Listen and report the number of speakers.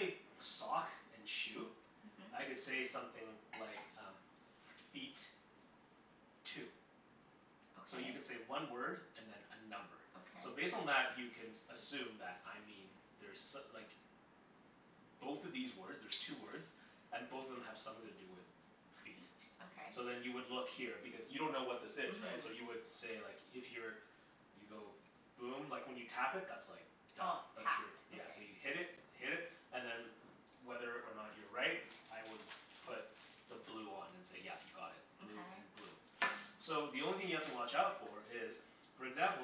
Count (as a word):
two